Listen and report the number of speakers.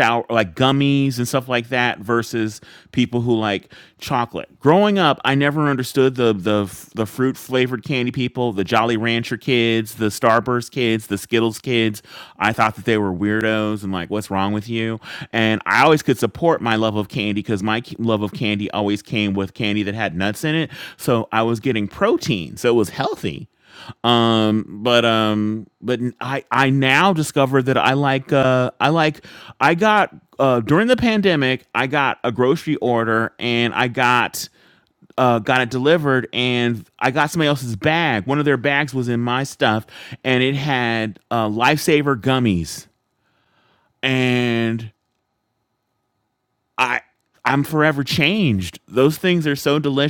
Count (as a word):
one